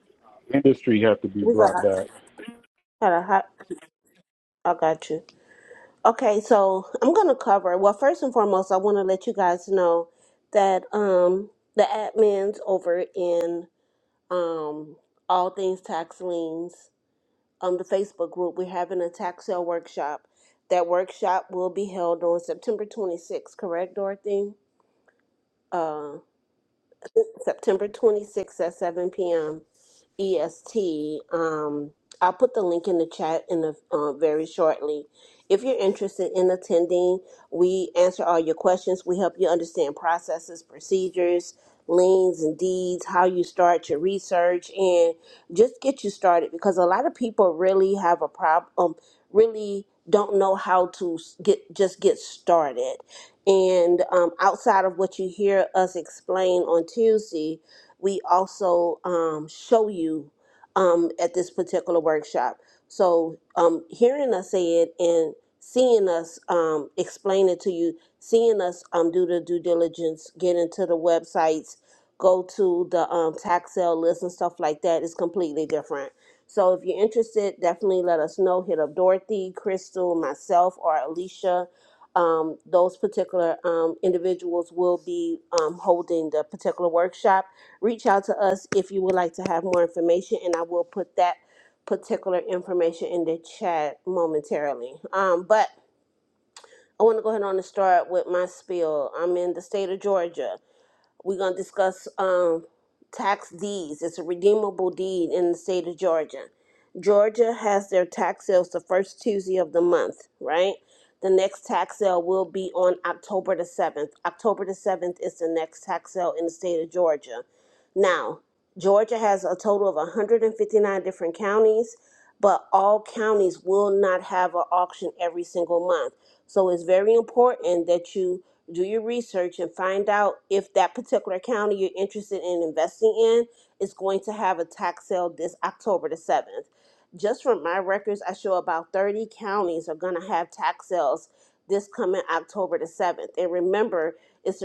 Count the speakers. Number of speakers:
2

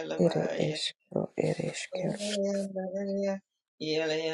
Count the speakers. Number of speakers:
2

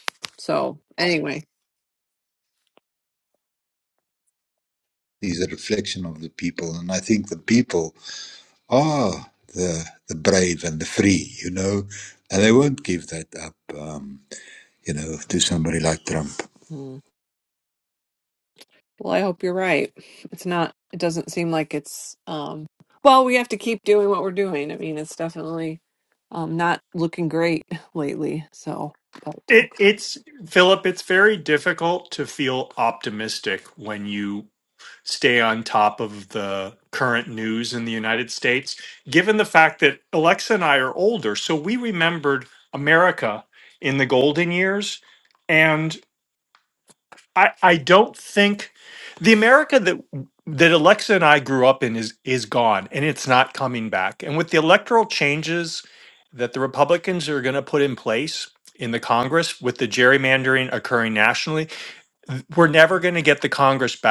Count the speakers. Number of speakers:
3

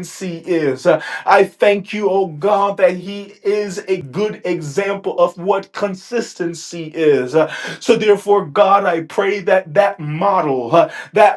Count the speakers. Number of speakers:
1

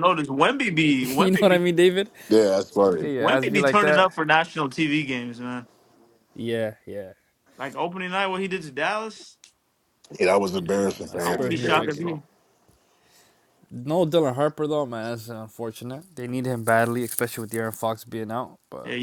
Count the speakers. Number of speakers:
3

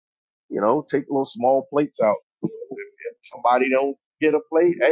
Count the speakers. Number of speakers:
1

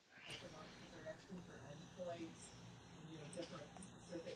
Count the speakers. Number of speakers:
0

